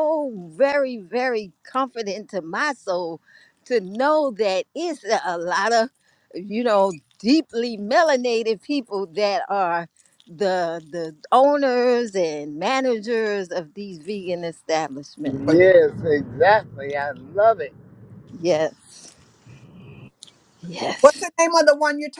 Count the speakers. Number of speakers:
three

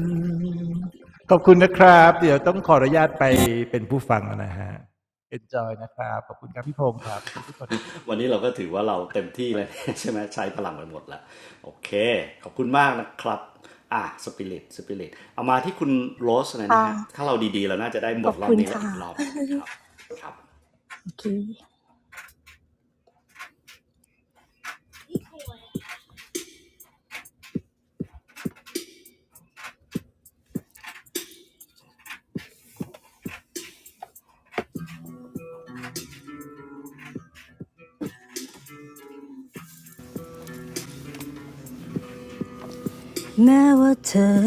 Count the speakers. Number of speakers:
three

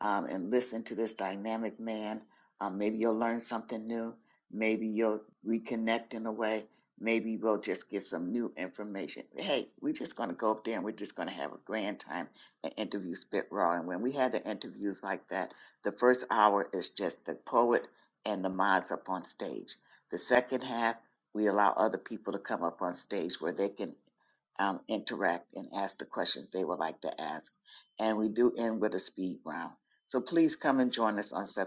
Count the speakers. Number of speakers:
one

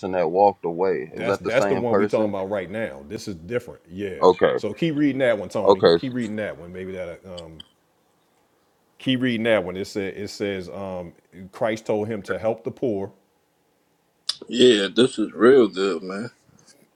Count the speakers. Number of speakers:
three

